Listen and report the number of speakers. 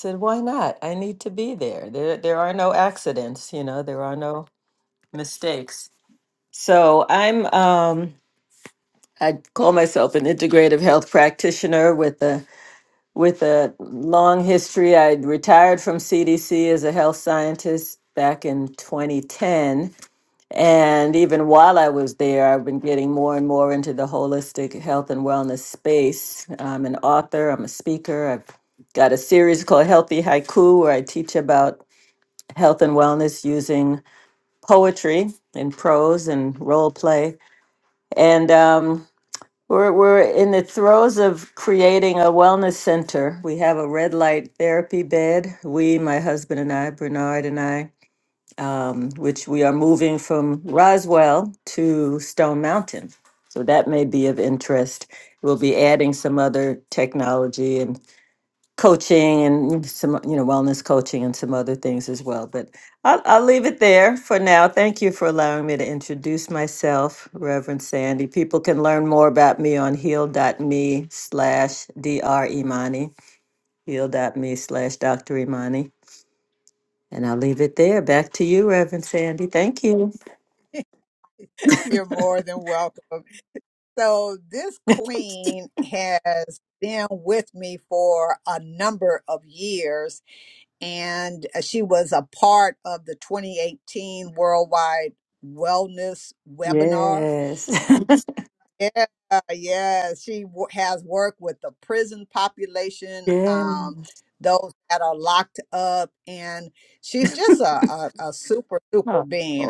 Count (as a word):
two